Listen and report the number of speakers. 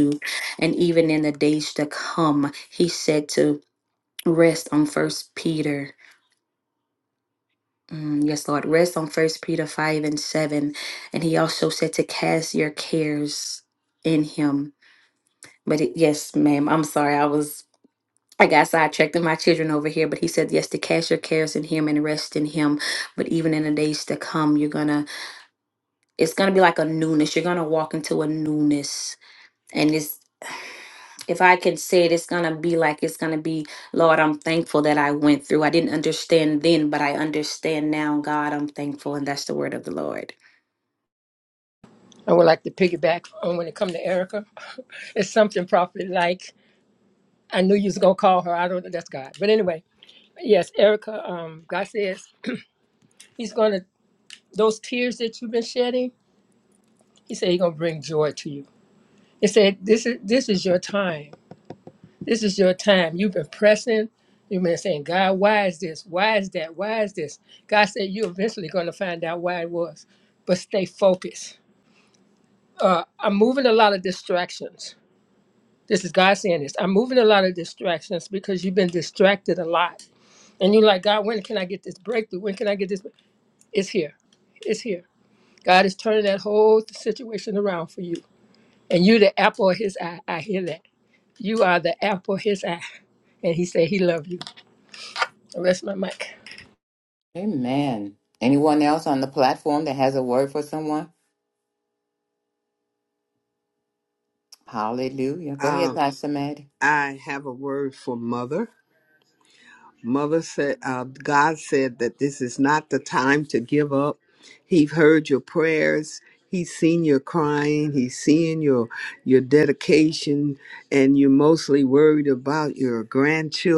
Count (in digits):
4